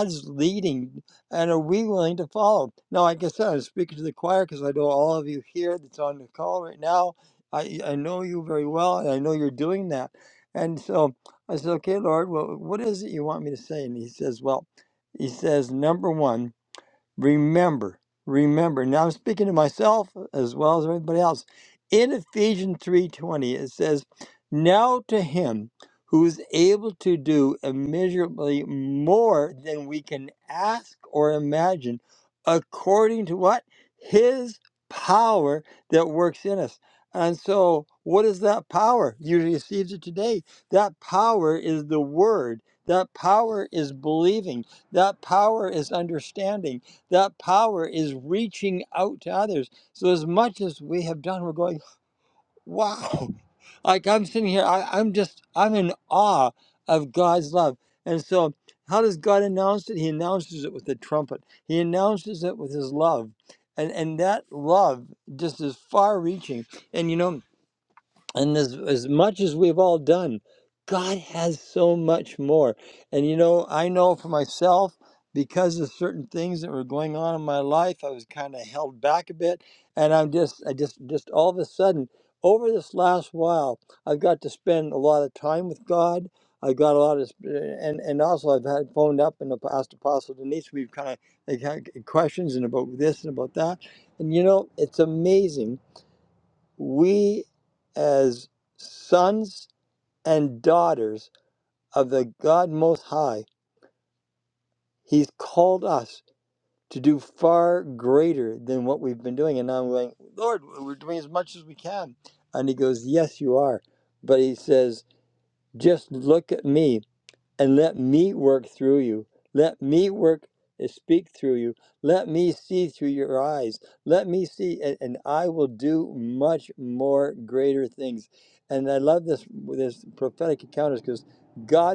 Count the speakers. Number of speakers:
one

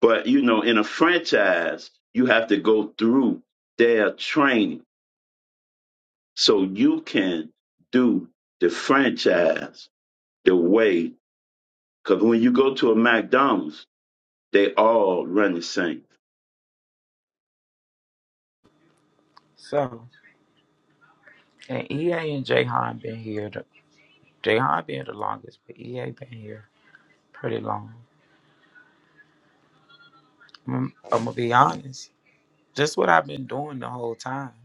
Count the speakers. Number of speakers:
two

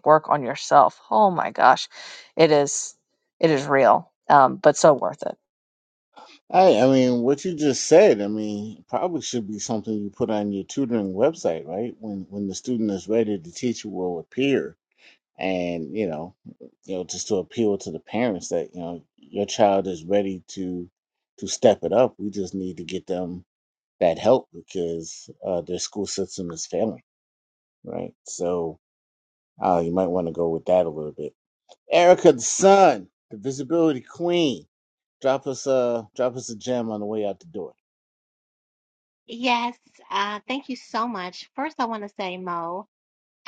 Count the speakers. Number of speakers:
three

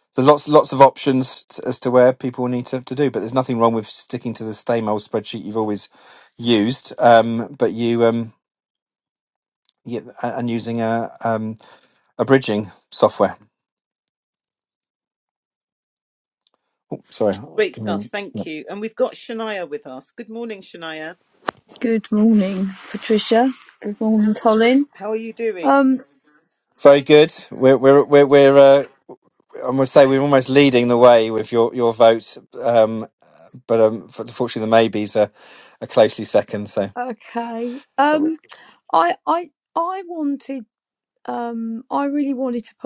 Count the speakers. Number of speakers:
three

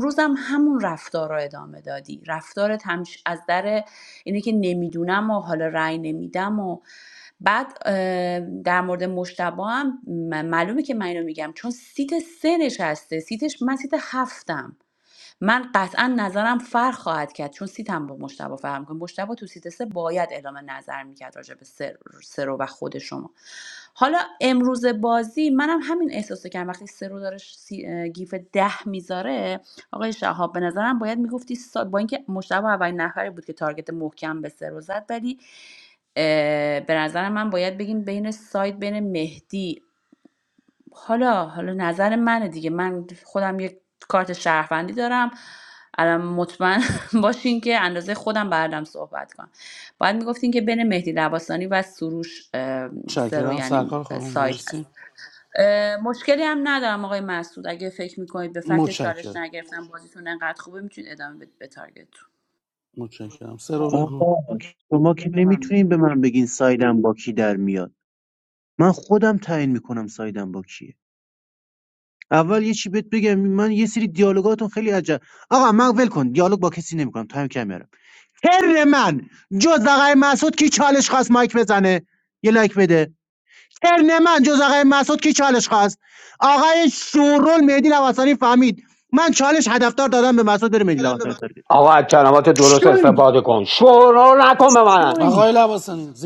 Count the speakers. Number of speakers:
four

